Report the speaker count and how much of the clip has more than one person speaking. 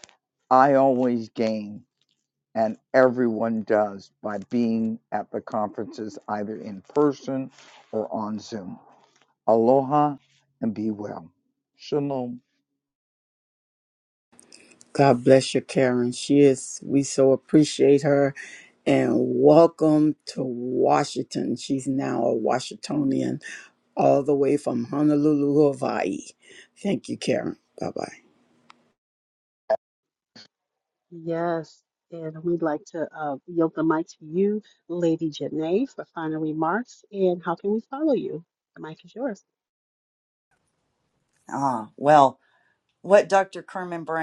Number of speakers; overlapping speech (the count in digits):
4, no overlap